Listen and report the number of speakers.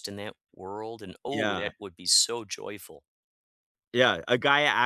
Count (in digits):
2